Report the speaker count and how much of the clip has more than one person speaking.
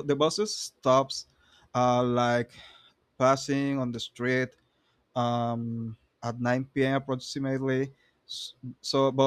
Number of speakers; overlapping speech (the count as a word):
one, no overlap